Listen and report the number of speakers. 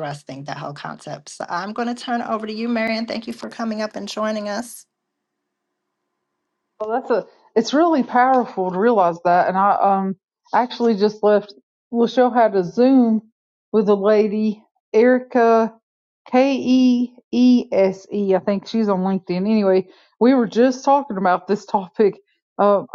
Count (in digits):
2